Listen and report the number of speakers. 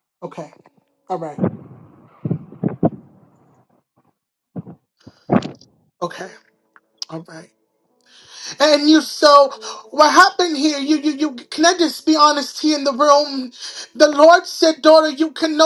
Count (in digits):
1